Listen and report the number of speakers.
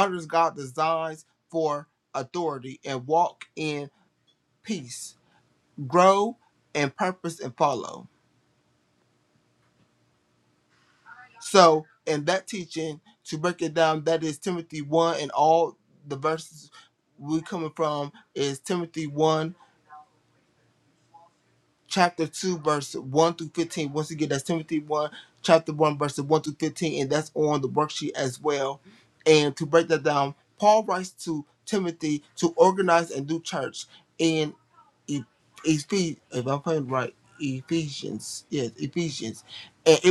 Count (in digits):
1